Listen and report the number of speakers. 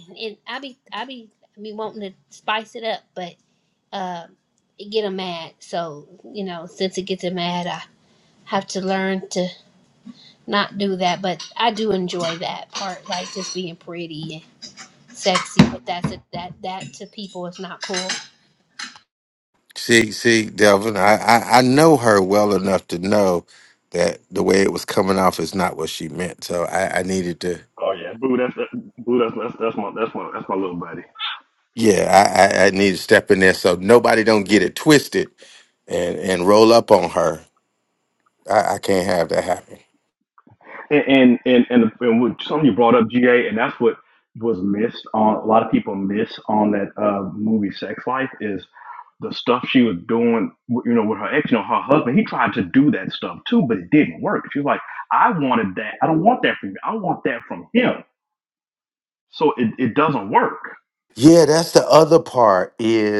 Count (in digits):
3